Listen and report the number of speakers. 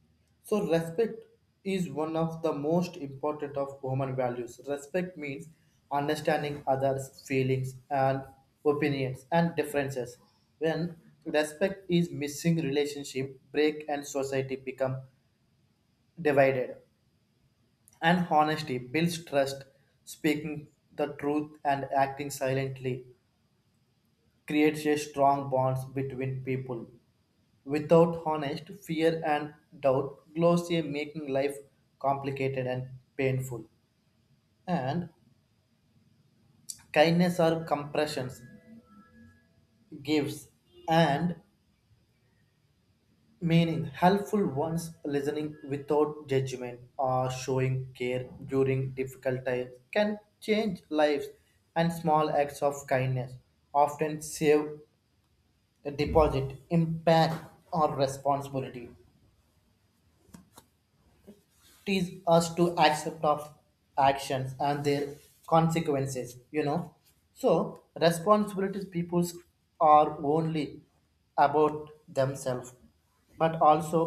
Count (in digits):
1